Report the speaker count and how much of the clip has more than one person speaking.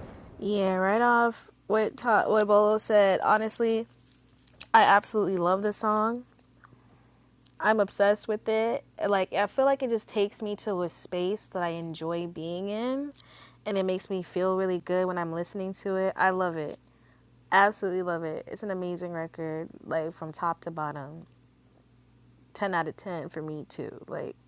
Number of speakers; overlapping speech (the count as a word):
one, no overlap